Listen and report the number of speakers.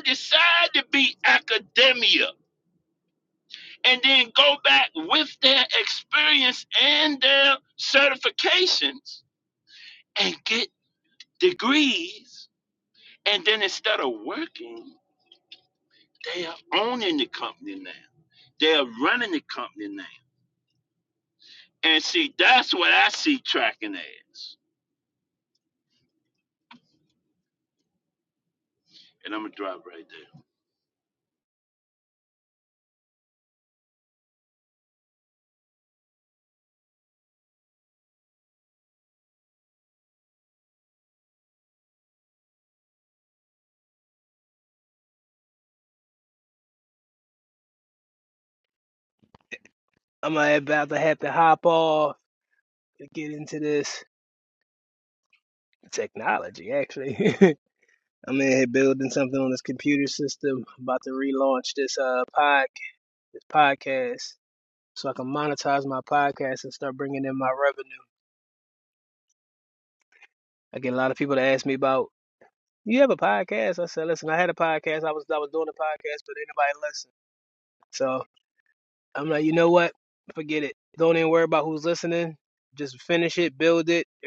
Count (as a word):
two